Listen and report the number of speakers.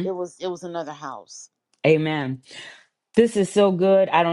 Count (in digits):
2